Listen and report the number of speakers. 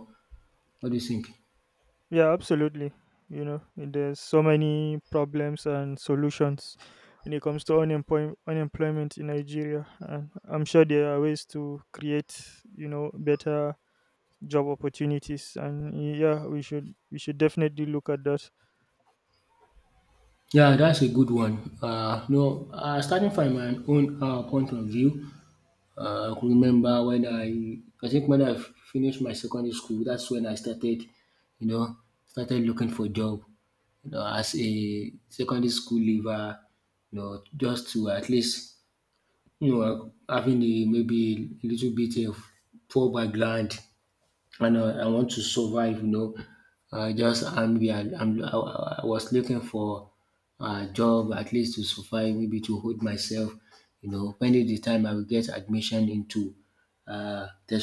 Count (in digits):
2